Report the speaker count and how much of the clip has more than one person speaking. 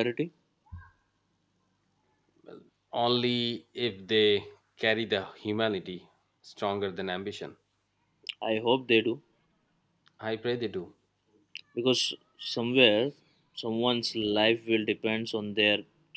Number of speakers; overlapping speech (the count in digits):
2, no overlap